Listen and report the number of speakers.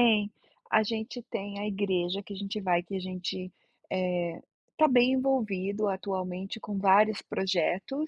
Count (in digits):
1